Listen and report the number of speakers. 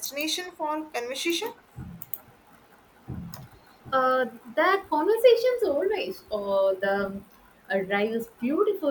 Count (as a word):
two